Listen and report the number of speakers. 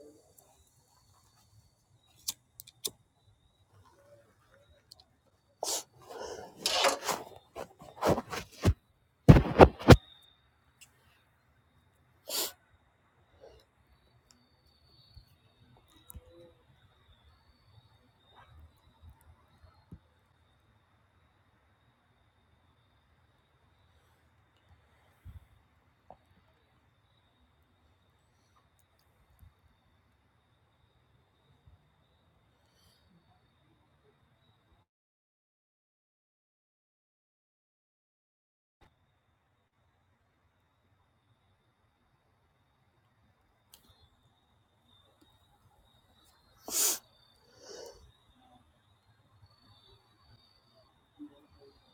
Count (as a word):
zero